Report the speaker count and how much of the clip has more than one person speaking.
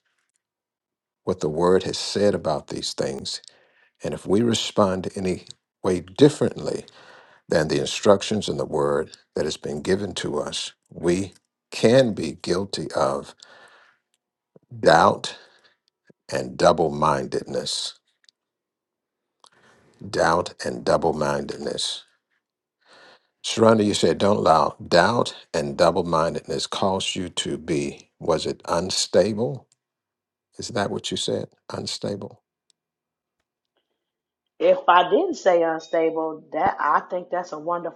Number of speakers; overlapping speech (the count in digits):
2, no overlap